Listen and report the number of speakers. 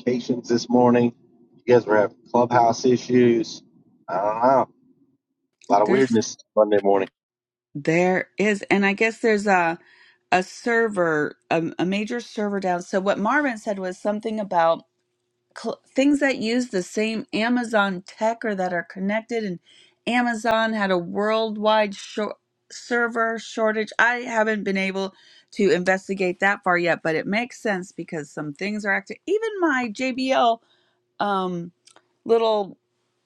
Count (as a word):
two